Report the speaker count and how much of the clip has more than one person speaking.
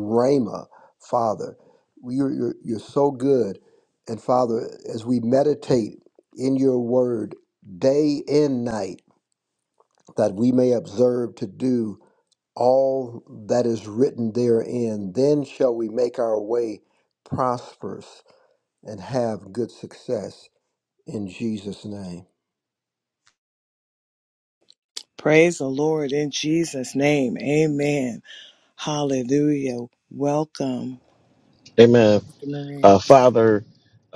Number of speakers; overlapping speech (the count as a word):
three, no overlap